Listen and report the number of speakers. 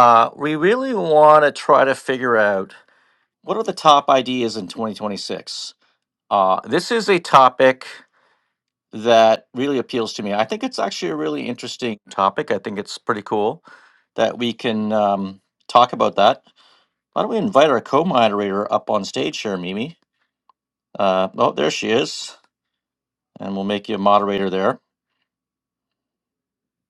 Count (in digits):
1